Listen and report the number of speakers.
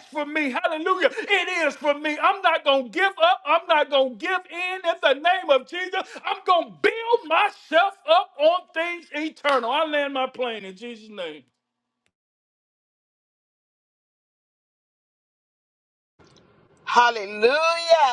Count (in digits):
2